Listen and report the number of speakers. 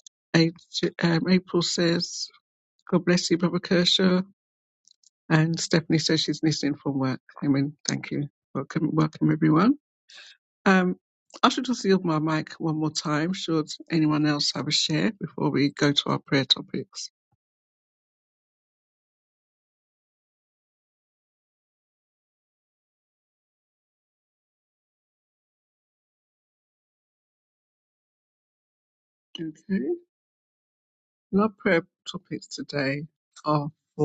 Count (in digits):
1